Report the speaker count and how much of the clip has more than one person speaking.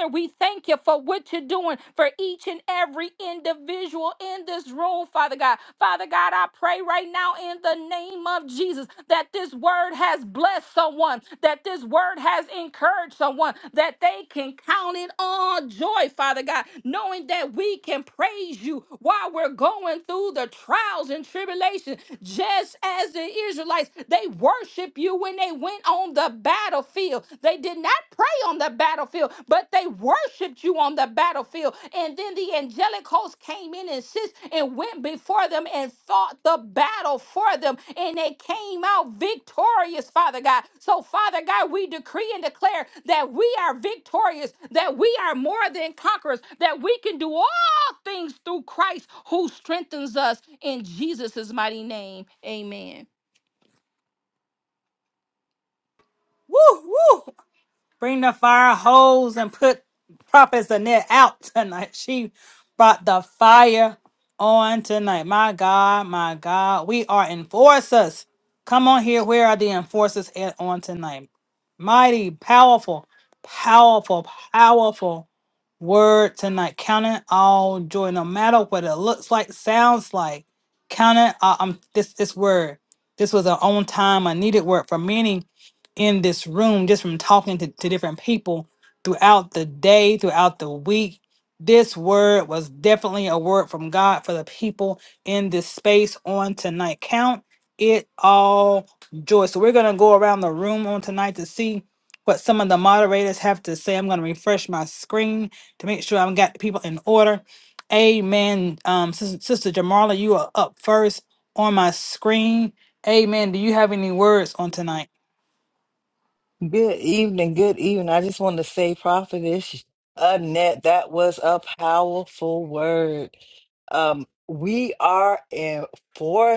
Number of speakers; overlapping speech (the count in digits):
3, no overlap